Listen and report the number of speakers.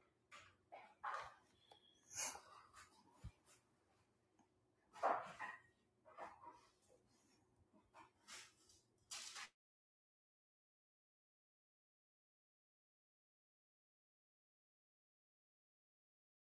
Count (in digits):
0